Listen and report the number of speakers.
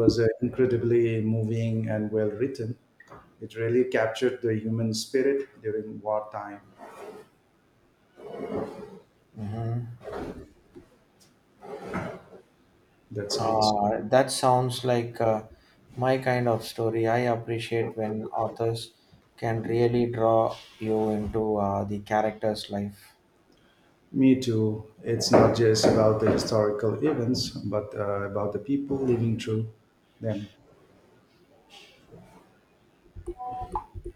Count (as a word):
two